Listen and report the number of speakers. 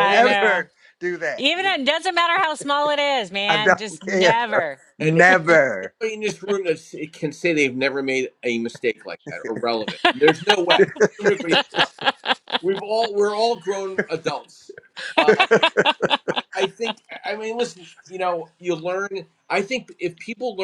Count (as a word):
three